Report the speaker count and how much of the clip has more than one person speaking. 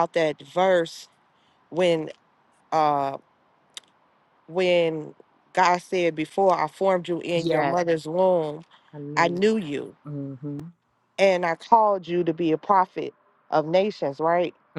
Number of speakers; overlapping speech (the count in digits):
2, about 4%